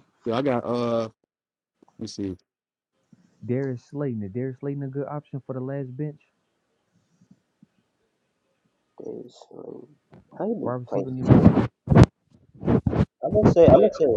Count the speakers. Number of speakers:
3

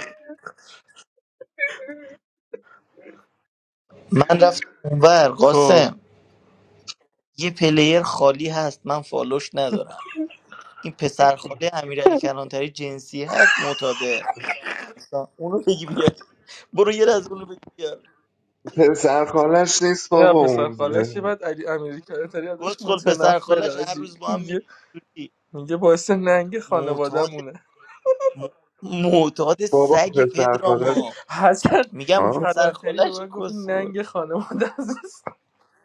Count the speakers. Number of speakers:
3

